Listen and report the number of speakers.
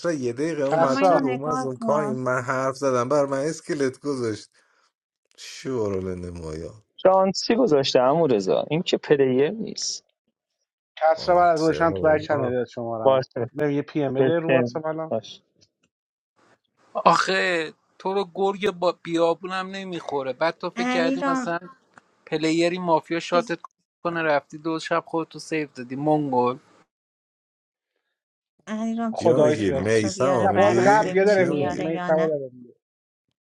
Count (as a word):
five